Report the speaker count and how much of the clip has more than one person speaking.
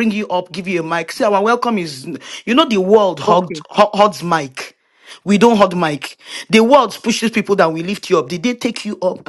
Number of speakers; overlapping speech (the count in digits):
1, no overlap